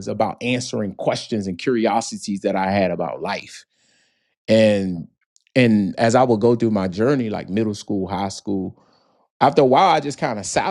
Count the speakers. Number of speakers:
1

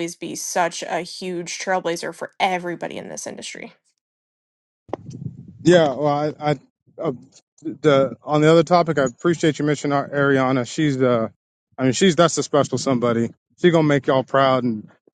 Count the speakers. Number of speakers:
2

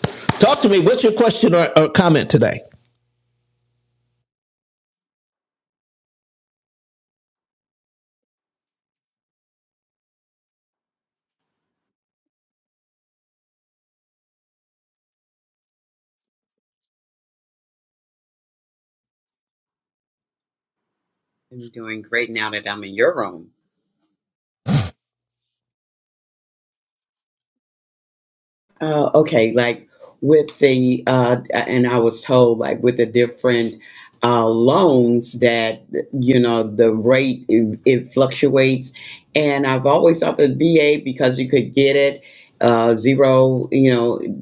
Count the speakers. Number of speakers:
2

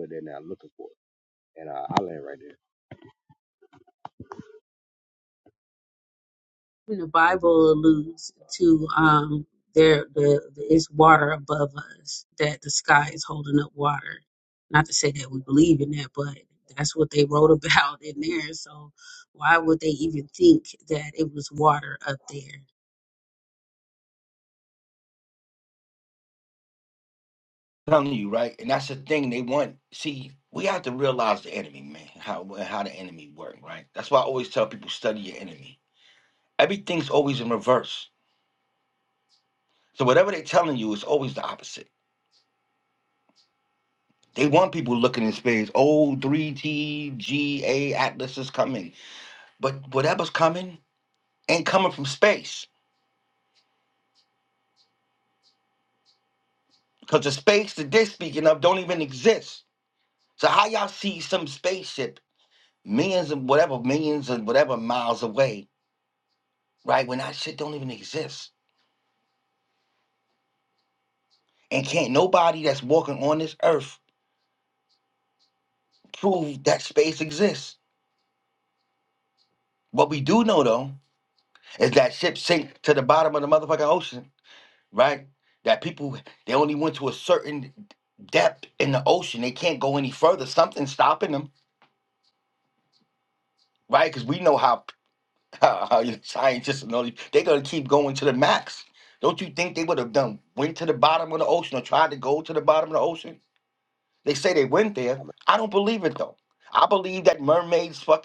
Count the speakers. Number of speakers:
3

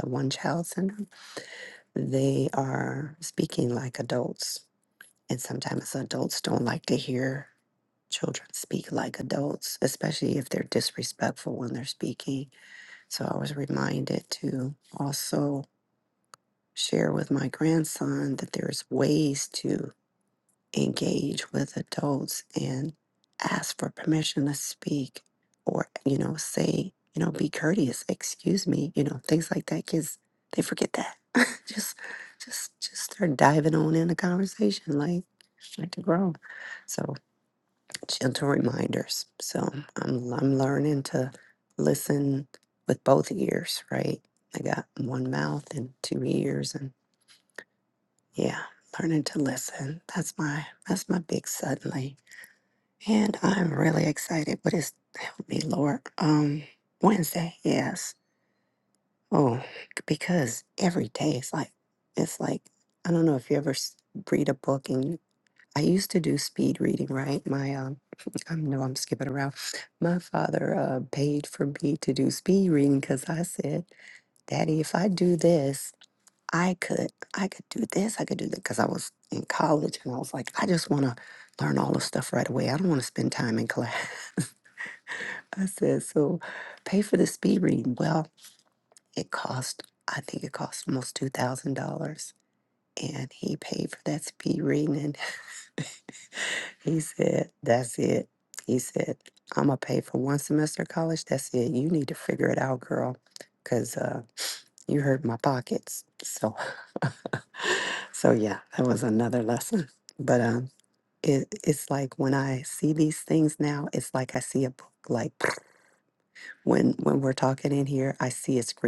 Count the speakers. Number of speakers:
1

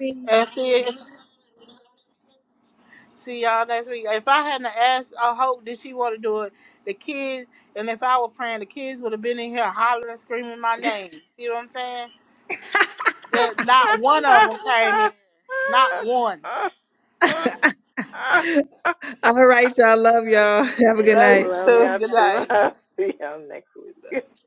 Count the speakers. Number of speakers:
3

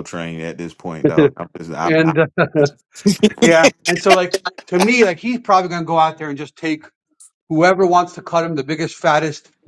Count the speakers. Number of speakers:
2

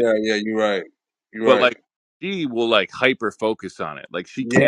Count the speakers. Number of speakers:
2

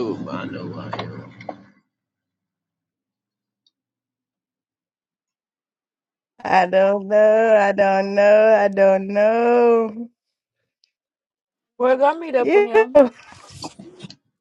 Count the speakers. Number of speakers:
3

